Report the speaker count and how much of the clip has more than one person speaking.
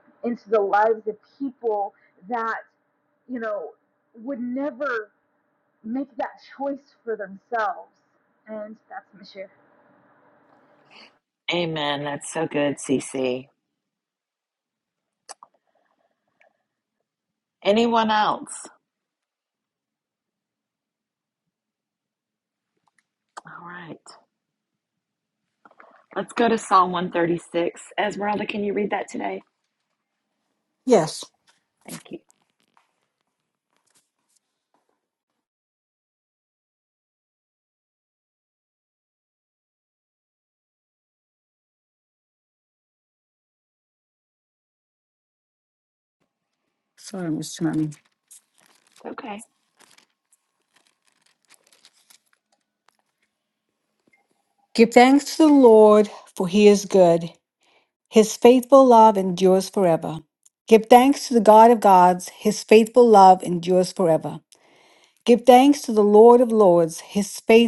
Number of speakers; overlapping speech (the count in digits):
3, no overlap